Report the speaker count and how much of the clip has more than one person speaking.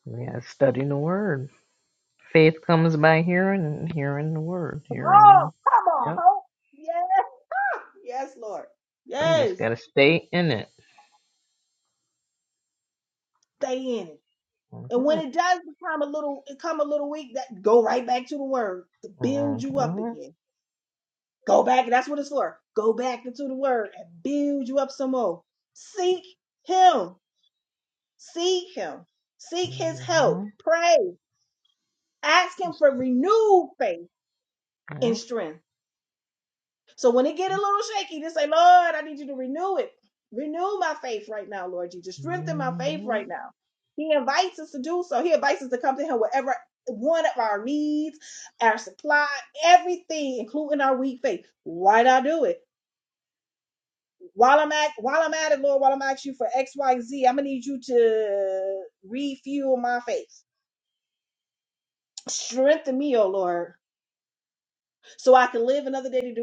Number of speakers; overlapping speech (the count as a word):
two, about 7%